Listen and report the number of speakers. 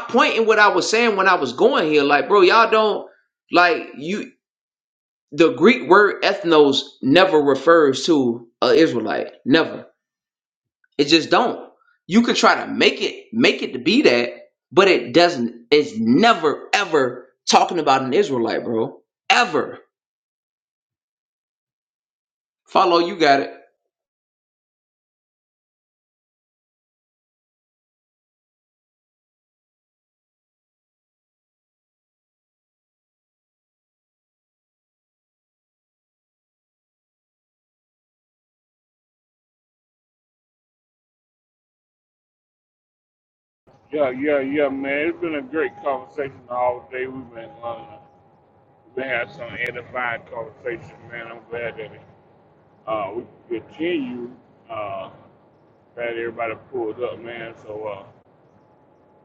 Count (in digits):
2